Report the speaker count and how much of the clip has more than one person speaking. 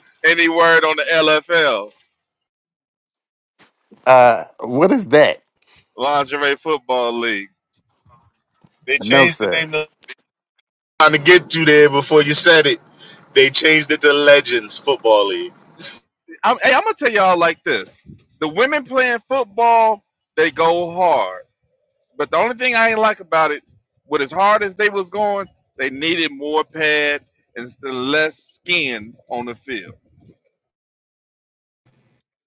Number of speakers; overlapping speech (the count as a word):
three, about 2%